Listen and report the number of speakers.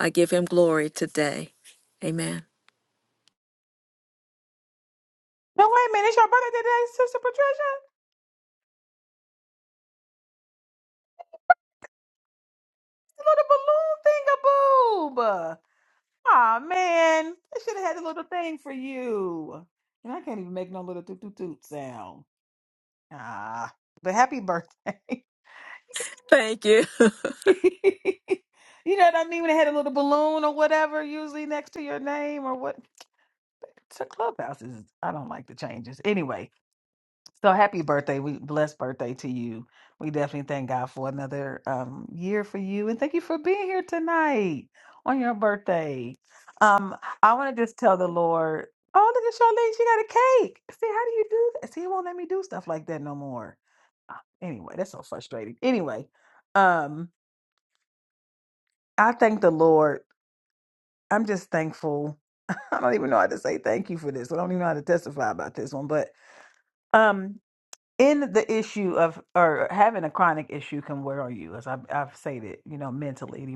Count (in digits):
2